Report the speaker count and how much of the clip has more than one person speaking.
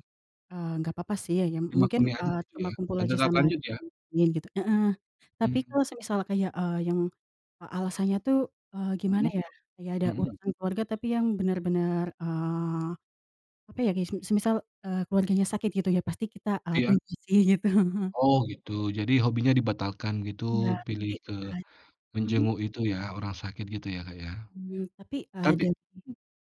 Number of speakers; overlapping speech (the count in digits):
2, about 12%